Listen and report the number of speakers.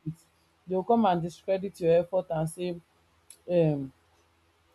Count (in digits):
1